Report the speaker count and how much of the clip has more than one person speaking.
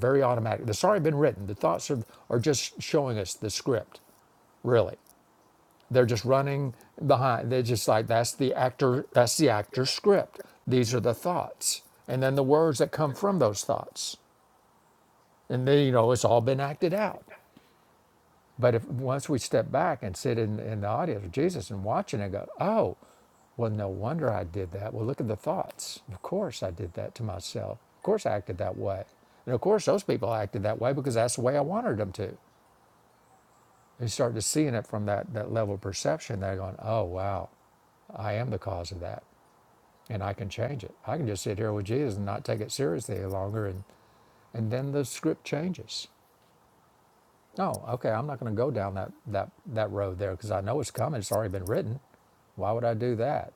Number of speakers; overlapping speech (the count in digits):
1, no overlap